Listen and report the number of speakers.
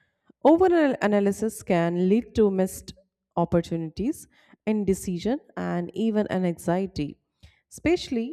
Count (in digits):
1